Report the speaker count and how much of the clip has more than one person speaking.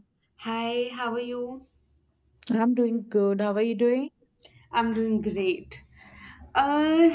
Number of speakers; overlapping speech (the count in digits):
2, no overlap